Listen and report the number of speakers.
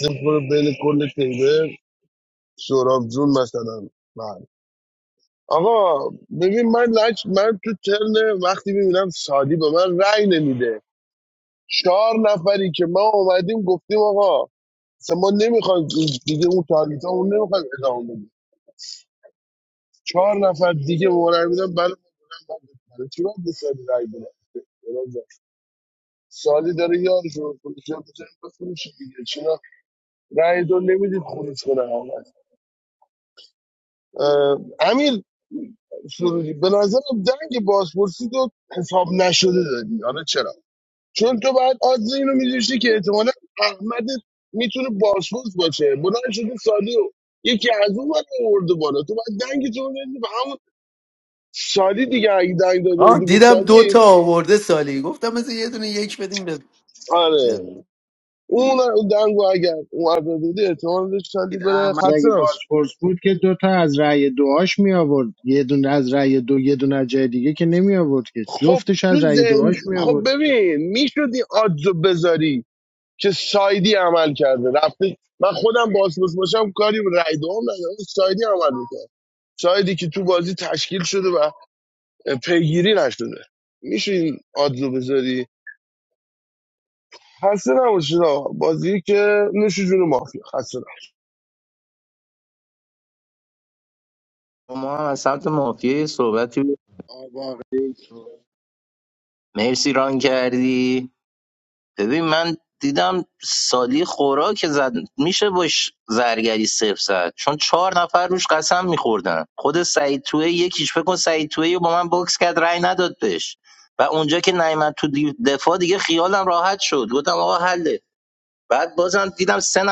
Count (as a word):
four